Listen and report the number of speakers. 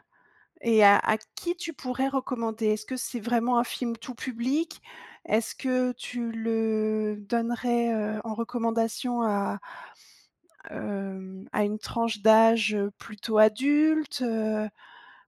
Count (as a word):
one